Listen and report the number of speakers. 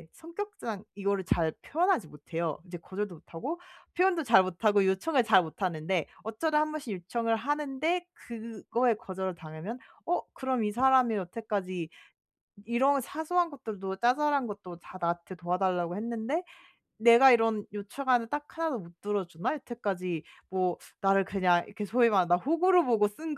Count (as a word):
one